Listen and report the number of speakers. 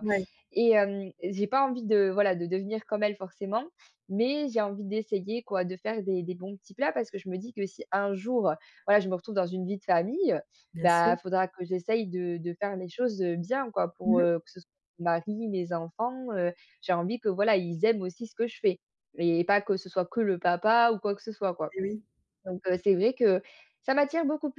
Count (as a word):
two